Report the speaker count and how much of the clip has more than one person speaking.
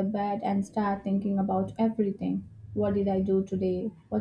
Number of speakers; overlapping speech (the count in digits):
1, no overlap